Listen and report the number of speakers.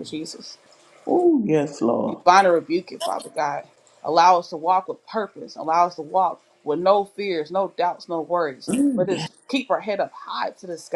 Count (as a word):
two